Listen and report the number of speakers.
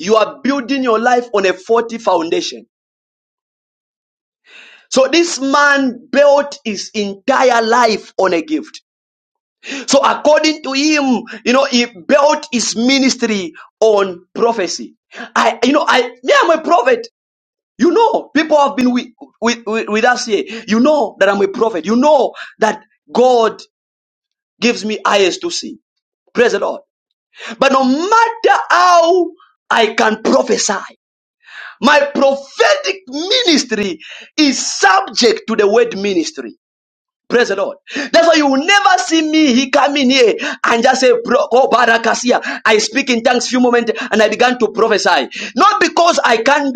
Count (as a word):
one